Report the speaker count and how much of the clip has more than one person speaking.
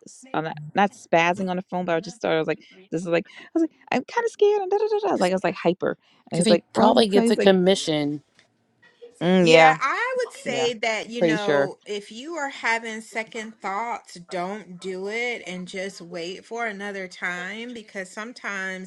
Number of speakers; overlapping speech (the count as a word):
three, about 12%